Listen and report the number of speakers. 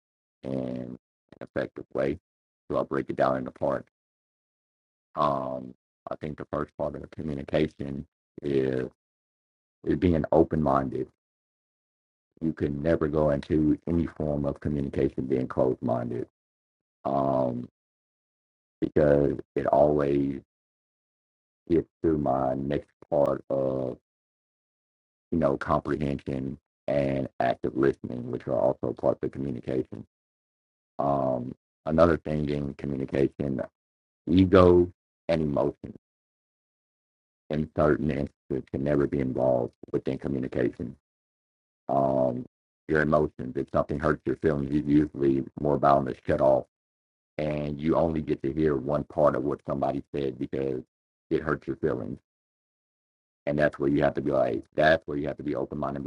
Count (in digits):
1